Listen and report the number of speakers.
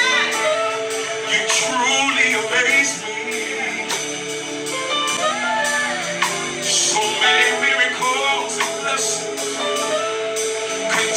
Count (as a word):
zero